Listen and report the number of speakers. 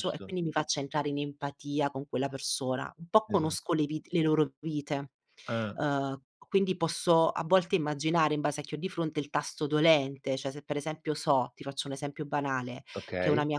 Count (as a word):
two